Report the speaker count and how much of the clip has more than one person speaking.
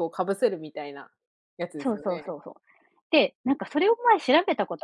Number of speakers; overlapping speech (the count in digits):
2, about 10%